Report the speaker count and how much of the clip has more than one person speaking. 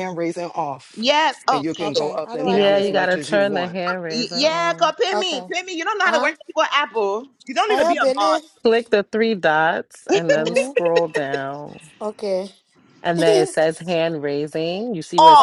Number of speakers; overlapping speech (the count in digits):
4, about 33%